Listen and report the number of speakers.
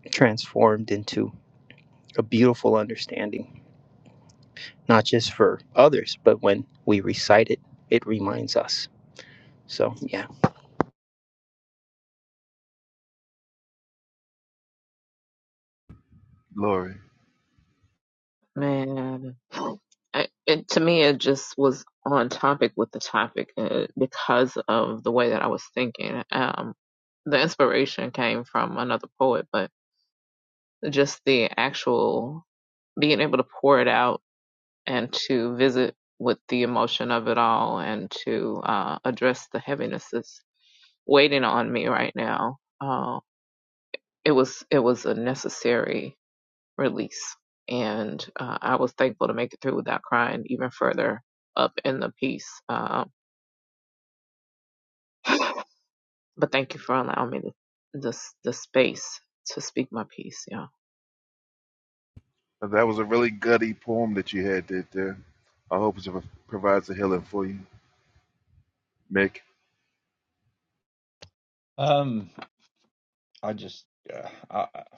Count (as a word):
four